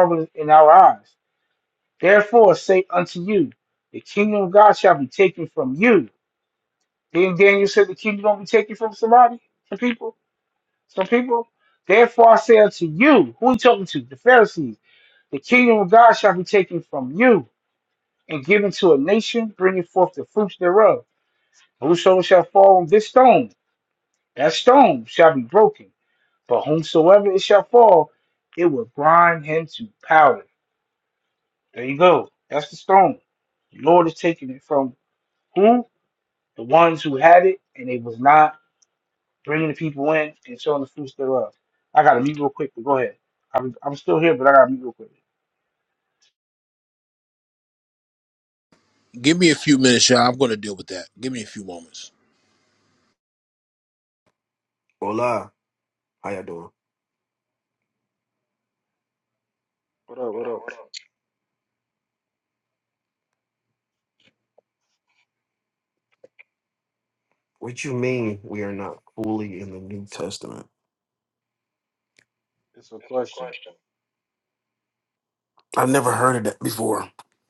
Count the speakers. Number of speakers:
4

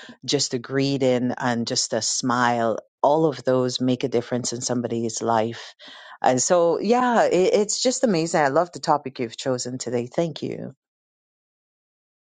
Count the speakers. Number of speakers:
1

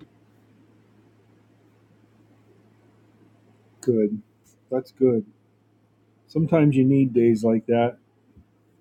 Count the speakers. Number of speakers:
1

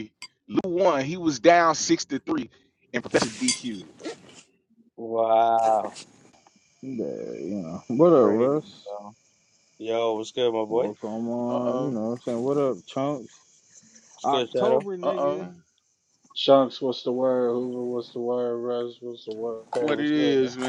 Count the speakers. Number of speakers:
4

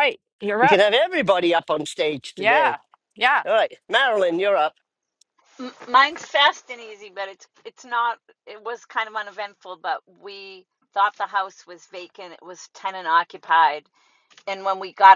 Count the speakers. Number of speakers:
3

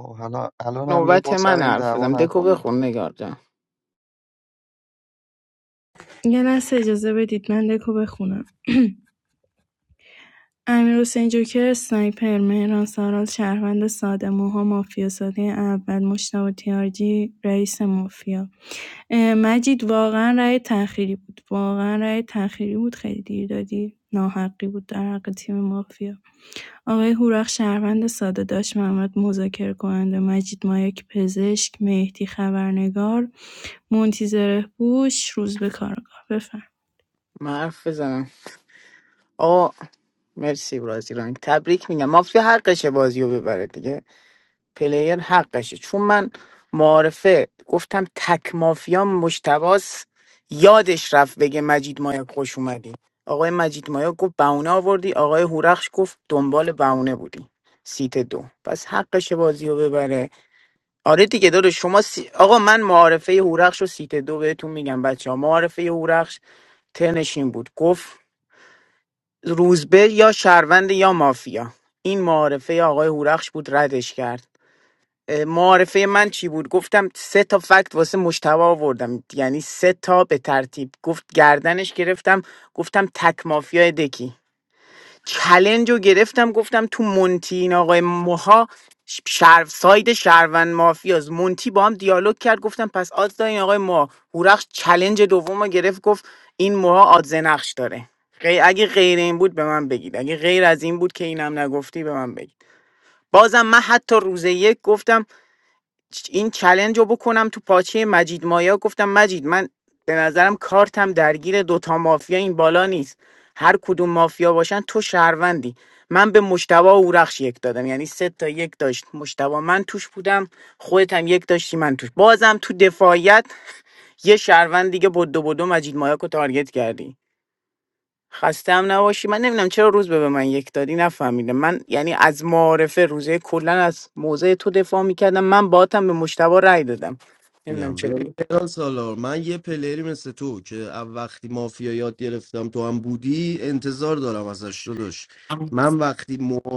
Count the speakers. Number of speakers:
4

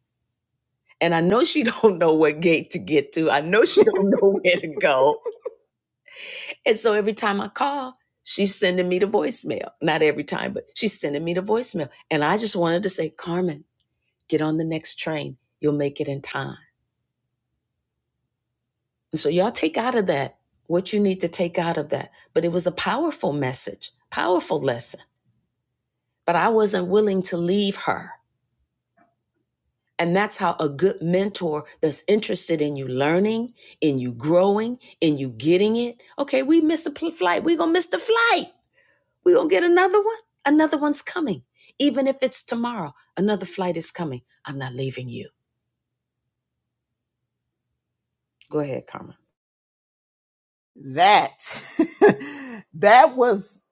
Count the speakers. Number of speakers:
2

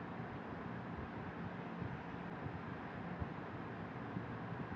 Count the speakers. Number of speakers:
0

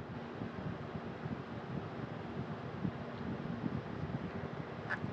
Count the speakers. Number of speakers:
0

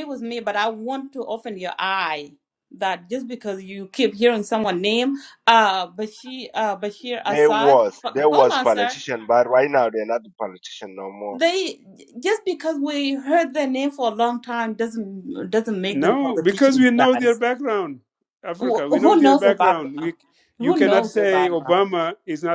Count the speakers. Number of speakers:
3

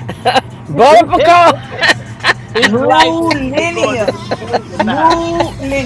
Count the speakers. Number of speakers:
3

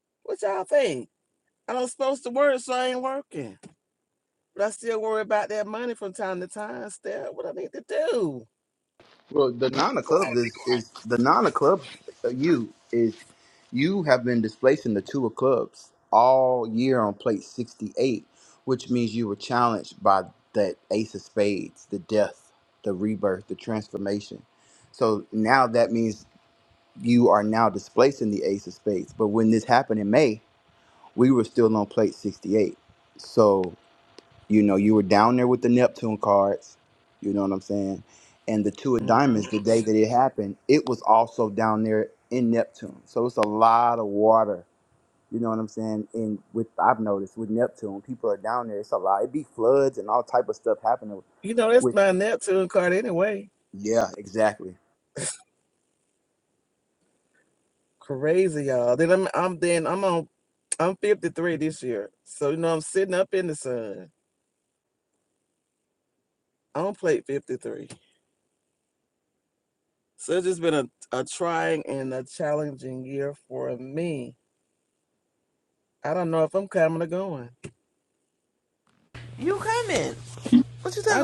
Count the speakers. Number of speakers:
3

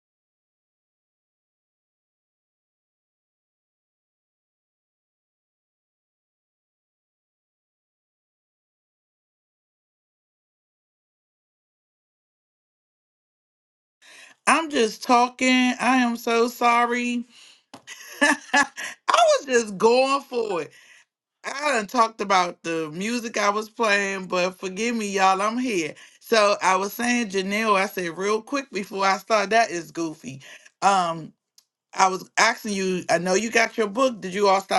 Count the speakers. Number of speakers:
1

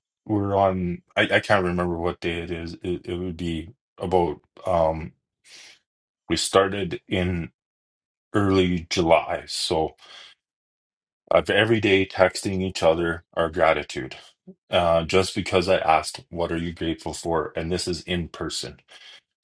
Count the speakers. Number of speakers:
1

